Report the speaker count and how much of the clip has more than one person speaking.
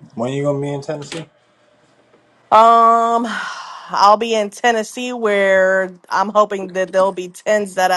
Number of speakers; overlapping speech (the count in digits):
2, no overlap